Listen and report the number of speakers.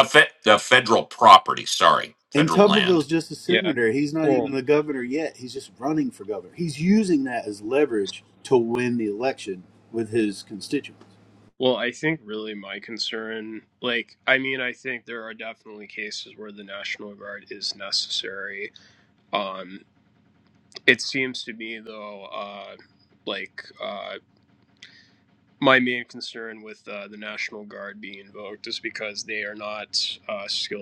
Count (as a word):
three